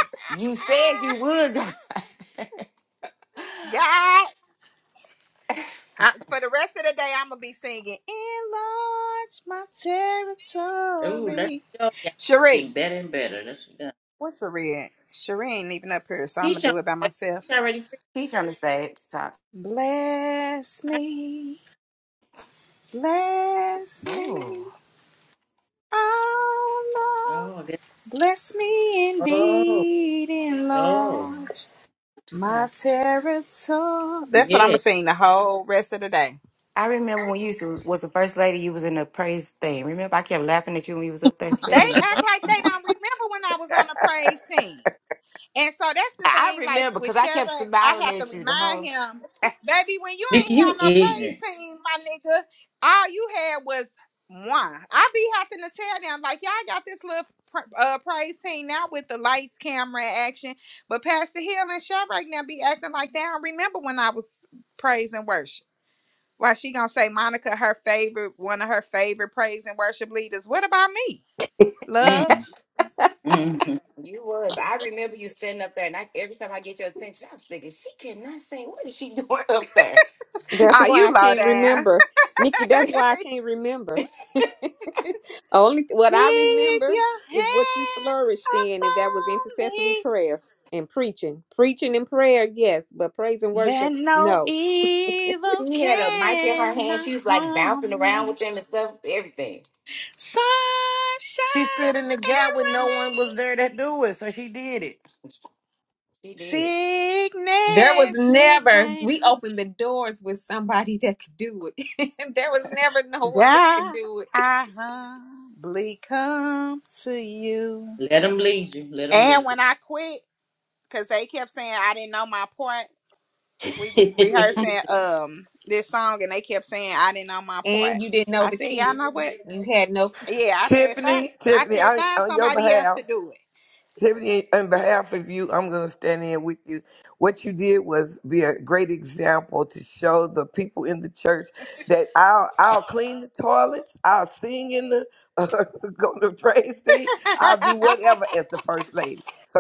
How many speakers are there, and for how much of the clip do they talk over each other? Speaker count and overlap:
6, about 15%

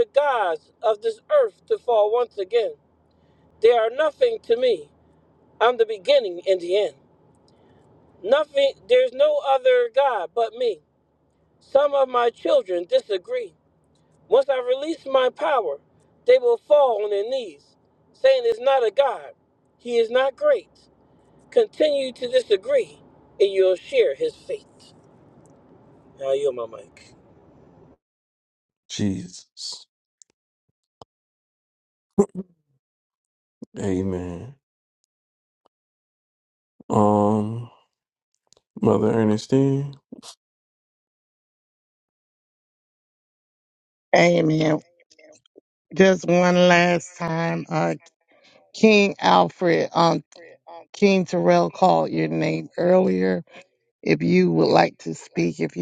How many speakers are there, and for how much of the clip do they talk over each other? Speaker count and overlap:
3, no overlap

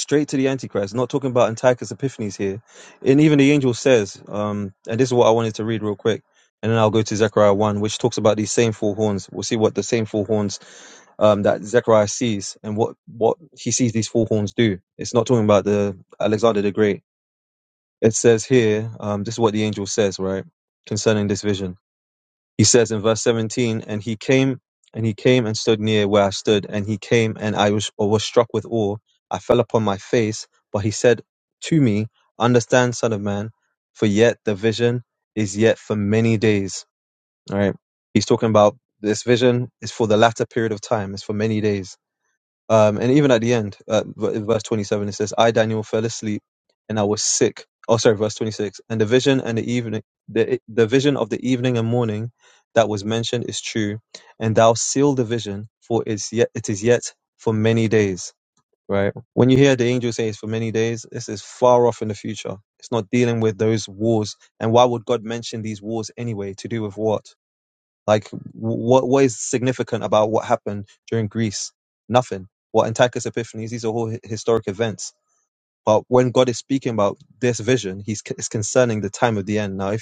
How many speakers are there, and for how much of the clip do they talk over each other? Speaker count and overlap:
1, no overlap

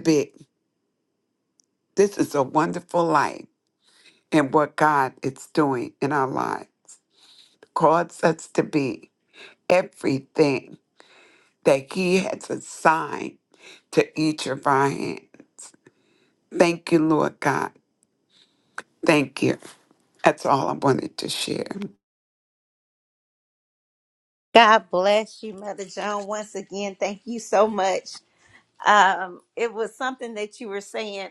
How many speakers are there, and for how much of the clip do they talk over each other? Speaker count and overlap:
2, no overlap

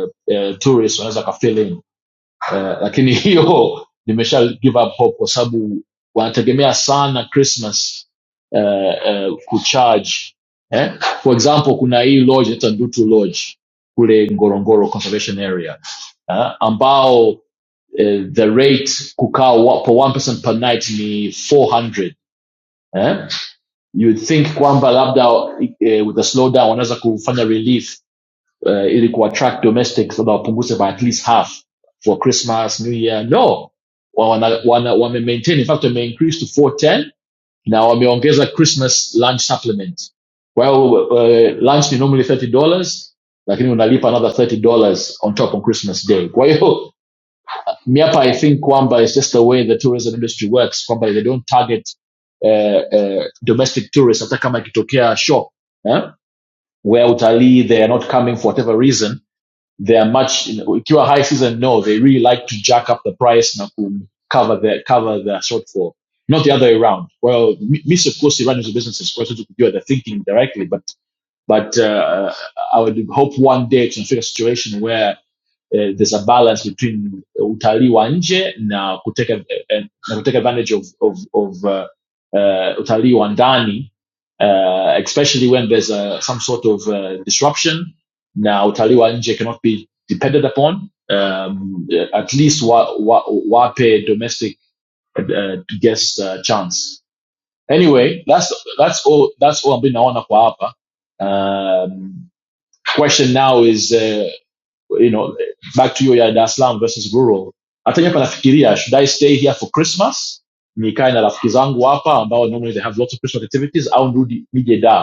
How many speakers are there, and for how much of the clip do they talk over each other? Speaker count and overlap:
1, no overlap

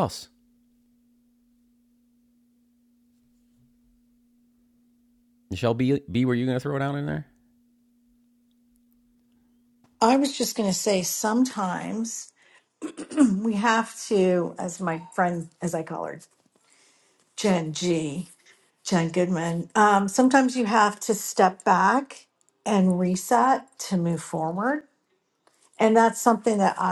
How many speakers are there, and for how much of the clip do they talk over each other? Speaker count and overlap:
2, no overlap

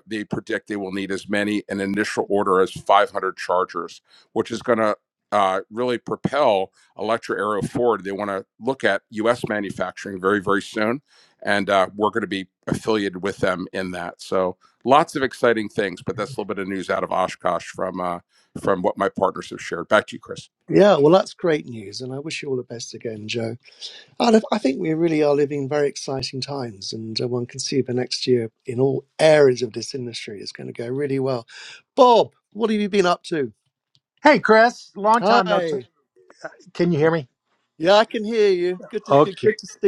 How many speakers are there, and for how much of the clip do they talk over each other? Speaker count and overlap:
3, about 3%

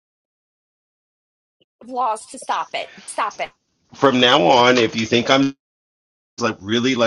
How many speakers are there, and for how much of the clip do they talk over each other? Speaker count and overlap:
2, no overlap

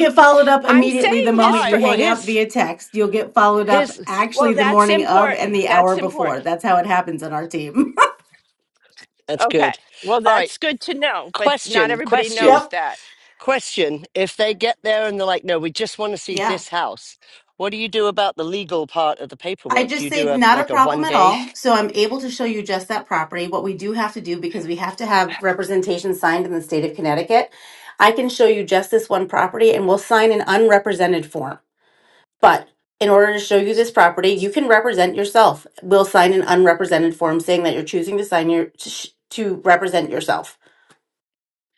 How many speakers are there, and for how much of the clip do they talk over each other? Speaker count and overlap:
3, about 19%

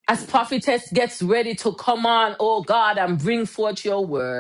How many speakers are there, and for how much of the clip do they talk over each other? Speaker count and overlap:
1, no overlap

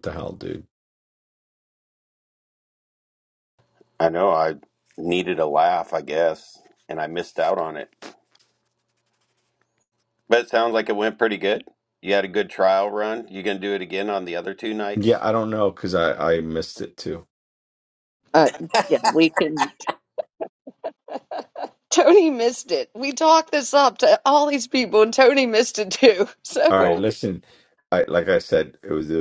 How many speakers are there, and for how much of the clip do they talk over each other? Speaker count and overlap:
3, under 1%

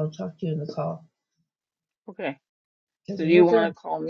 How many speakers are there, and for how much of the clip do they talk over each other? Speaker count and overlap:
2, about 12%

